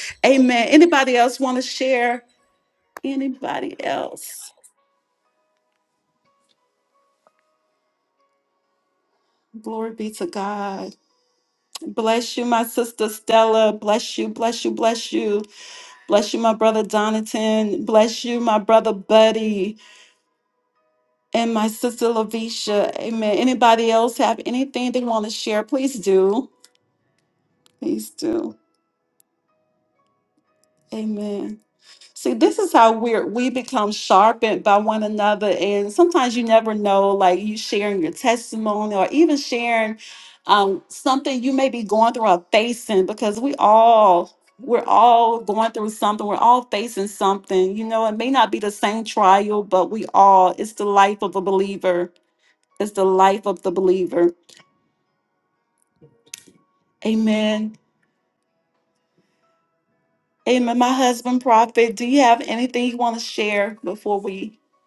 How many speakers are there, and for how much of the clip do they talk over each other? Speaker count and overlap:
1, no overlap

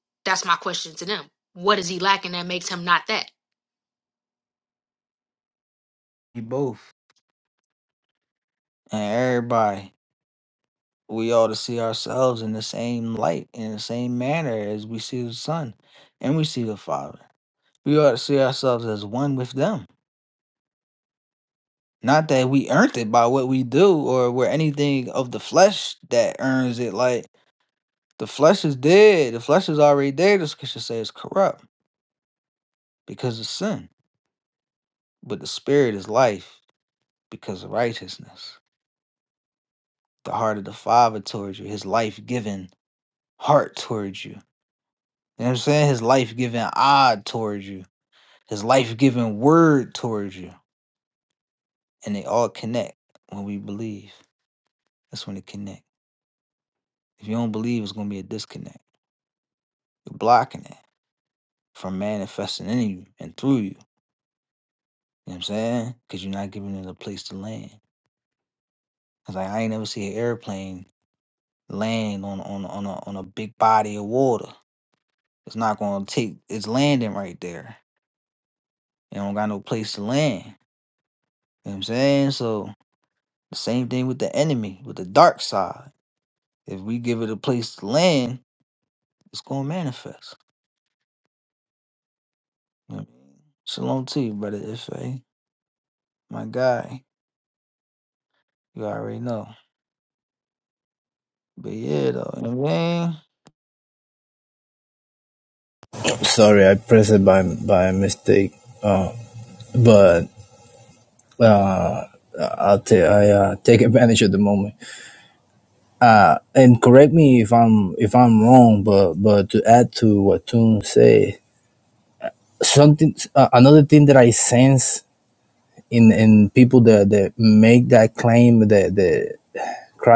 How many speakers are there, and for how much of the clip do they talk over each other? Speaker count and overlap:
3, no overlap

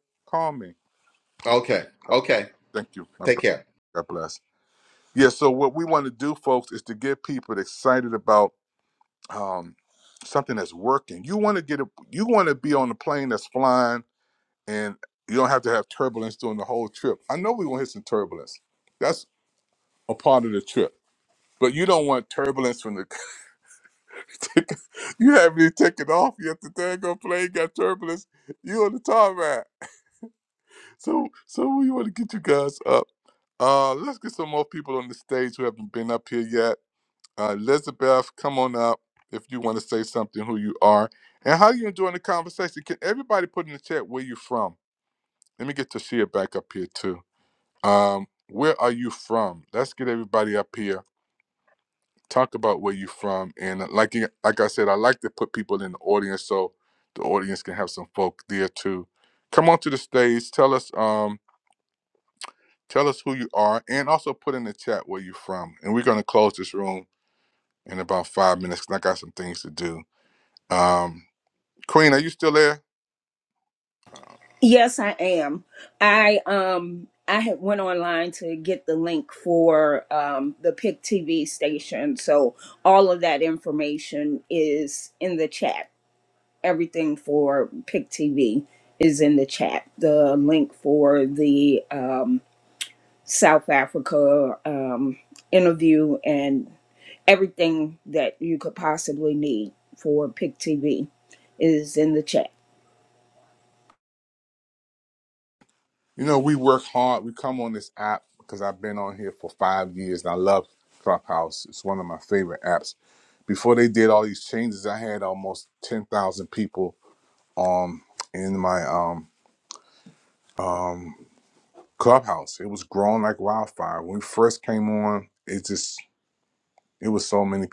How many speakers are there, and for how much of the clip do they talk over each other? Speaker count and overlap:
3, under 1%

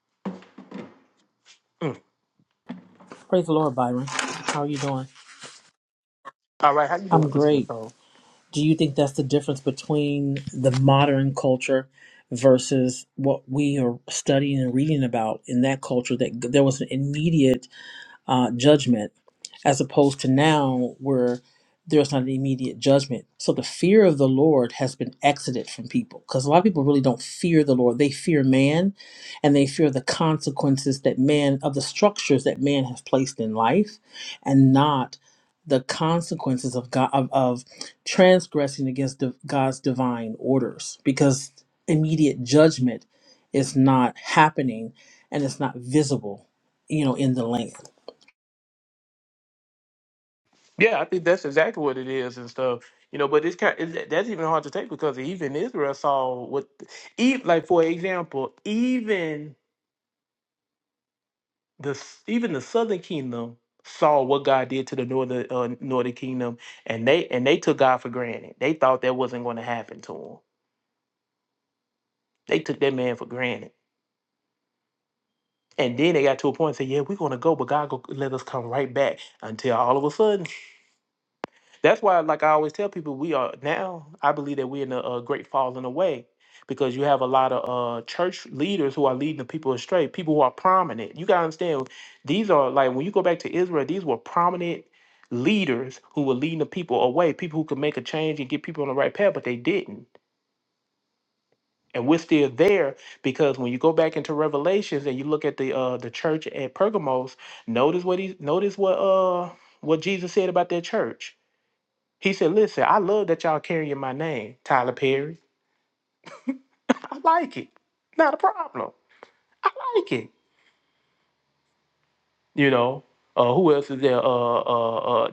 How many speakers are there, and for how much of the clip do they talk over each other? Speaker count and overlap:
2, under 1%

